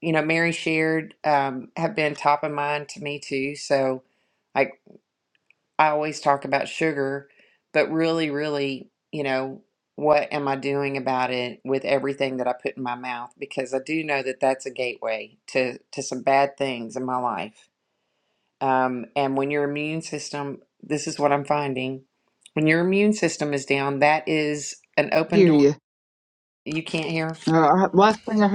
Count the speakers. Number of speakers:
2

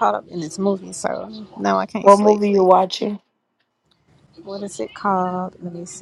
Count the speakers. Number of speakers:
2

